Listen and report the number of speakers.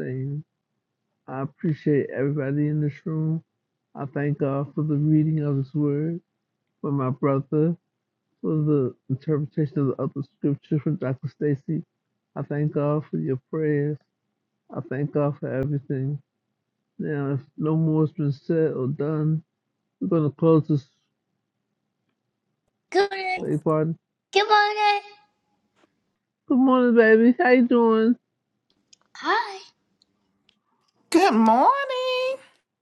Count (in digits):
3